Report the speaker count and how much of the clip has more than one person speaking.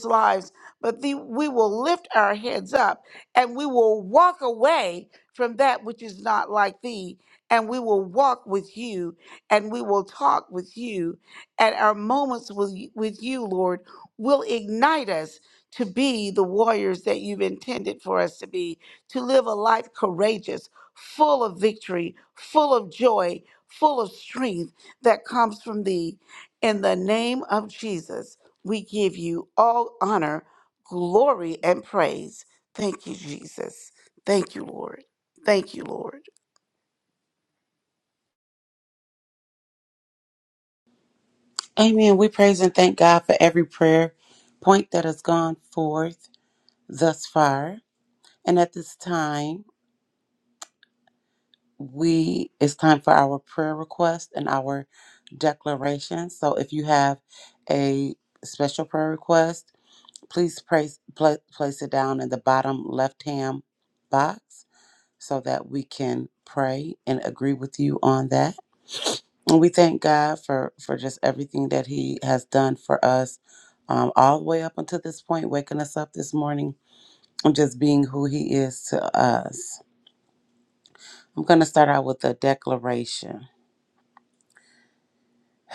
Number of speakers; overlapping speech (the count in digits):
2, no overlap